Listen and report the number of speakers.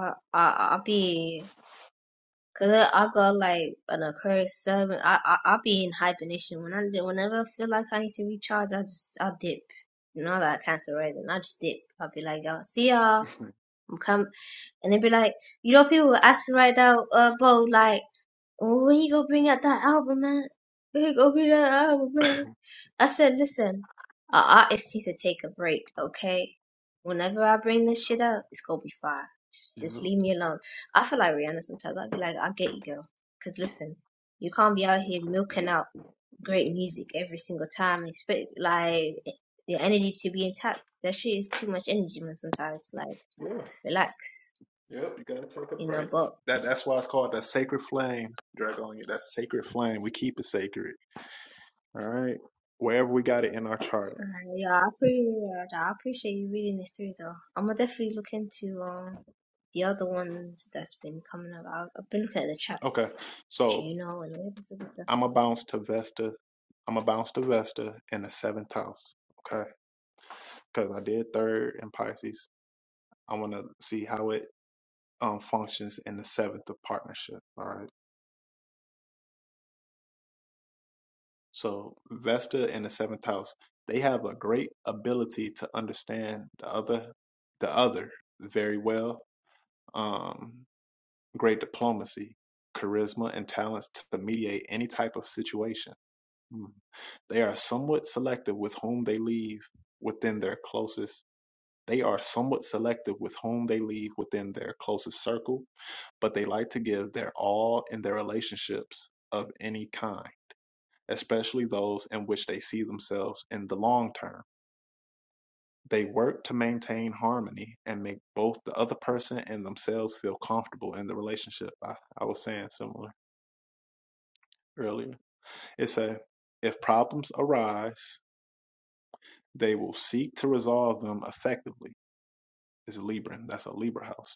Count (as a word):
two